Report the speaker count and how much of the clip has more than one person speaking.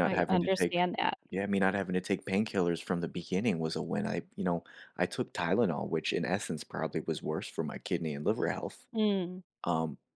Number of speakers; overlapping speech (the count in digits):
2, about 7%